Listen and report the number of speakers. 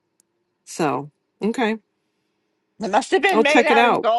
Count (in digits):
2